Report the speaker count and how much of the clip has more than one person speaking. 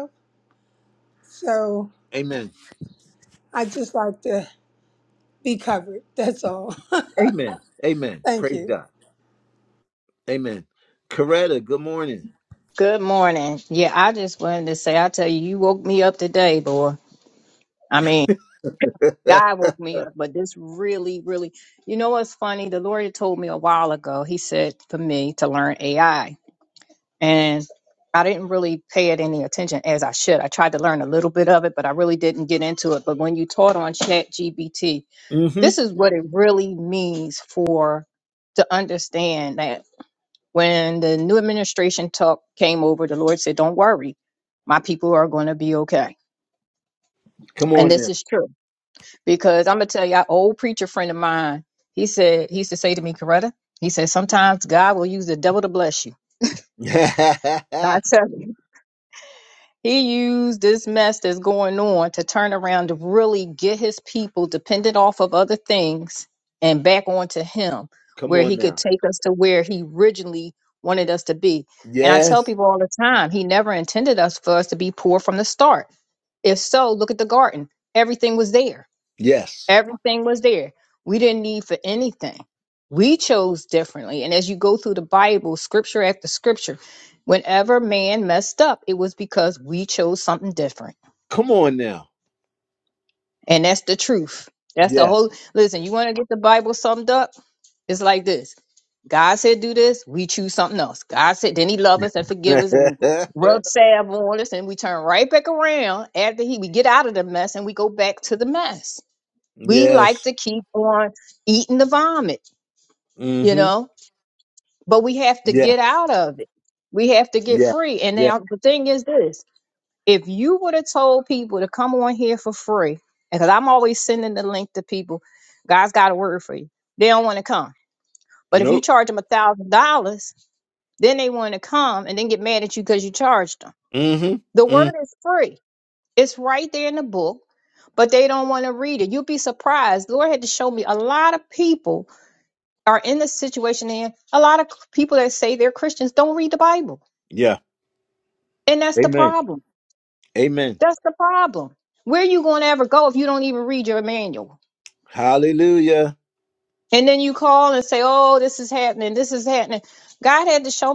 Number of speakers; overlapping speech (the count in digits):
3, about 3%